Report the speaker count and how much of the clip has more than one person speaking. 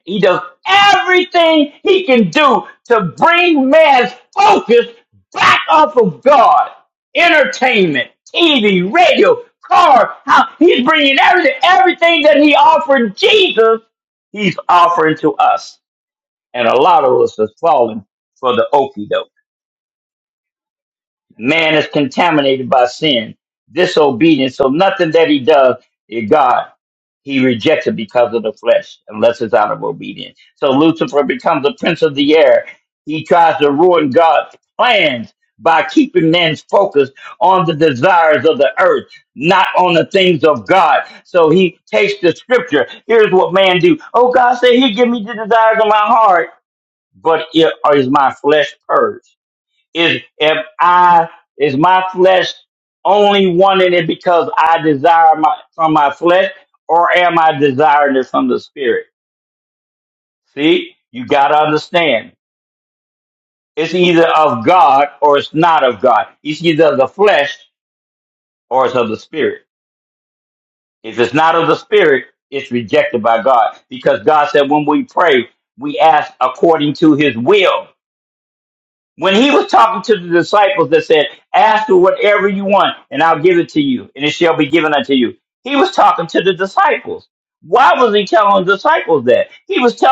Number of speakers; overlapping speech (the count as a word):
one, no overlap